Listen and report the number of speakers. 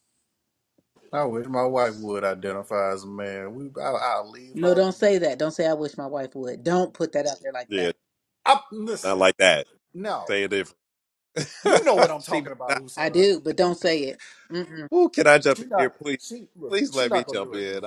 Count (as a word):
three